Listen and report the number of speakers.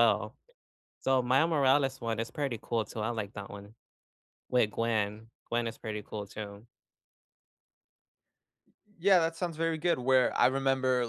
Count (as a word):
two